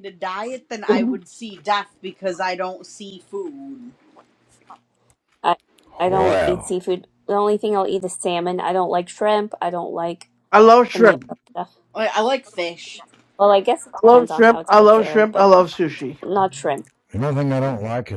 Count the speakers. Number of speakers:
4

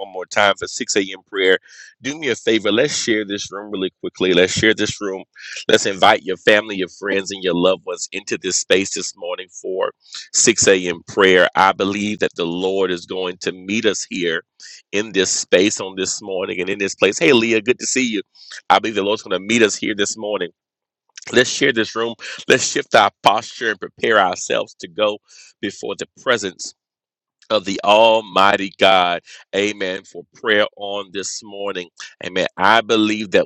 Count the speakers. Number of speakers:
1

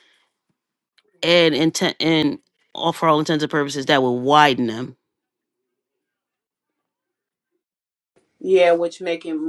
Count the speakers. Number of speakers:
2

